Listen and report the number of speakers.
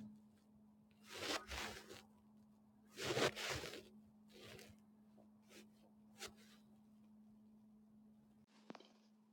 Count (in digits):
0